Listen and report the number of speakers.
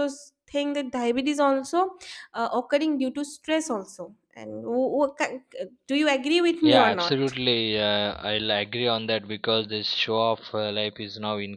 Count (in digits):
2